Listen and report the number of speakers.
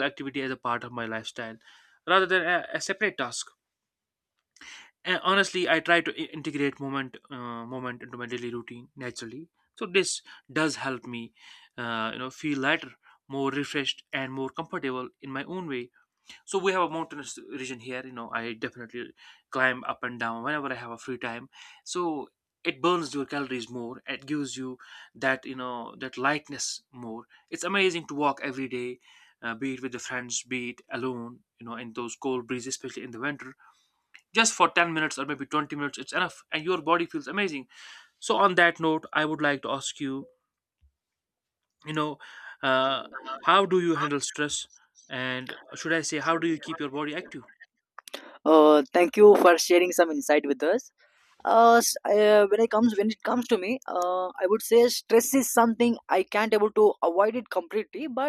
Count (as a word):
two